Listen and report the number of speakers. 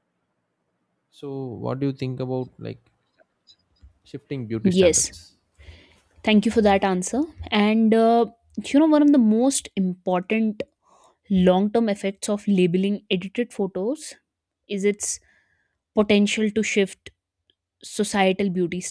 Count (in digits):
2